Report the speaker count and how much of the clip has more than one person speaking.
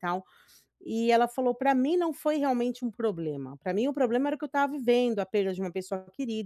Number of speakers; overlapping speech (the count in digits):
1, no overlap